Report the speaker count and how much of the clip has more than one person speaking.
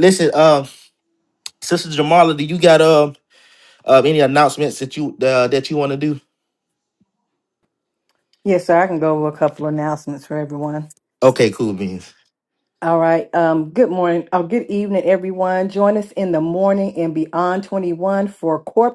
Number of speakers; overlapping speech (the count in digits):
2, no overlap